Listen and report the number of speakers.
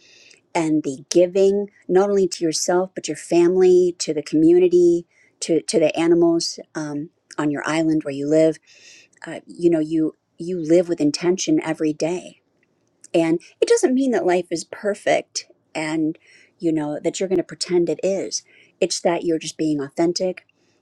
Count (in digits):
1